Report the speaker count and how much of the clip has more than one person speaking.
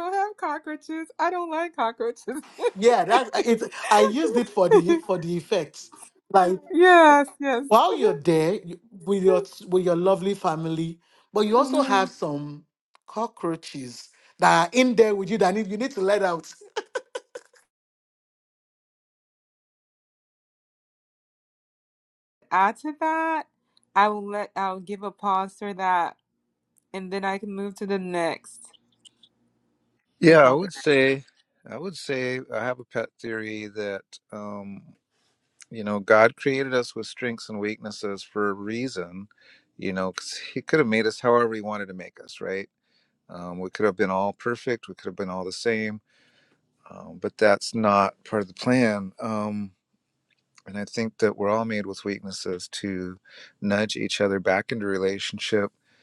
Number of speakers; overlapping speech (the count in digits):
3, about 1%